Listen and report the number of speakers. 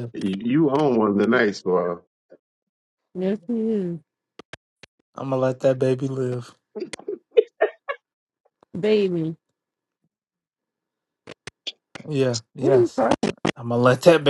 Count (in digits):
3